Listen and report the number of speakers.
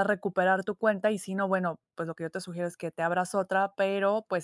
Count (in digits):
1